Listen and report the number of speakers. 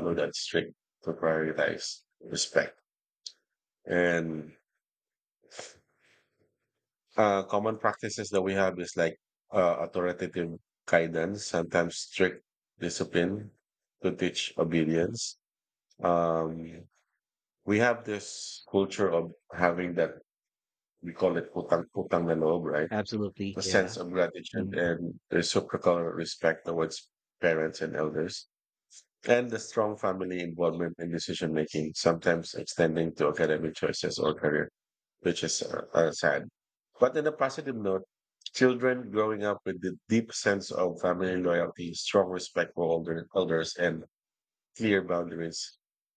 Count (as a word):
two